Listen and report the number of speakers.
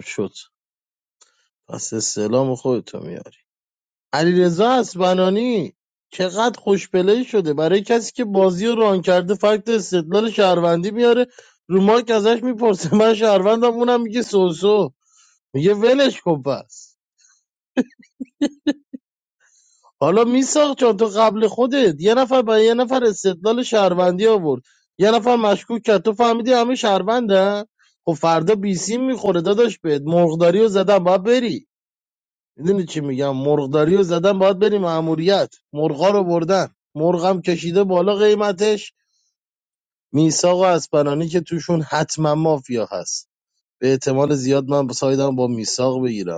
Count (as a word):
one